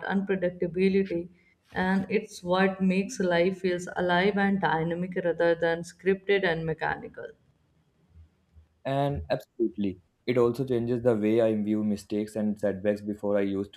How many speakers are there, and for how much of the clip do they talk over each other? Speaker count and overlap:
2, no overlap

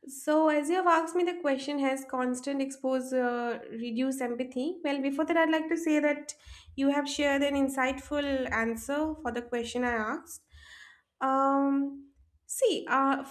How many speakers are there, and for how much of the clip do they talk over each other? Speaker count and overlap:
1, no overlap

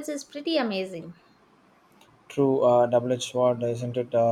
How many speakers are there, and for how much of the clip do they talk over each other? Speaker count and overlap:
2, no overlap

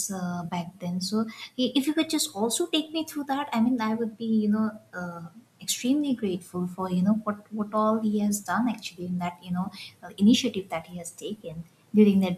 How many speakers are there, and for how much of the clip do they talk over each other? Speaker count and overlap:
1, no overlap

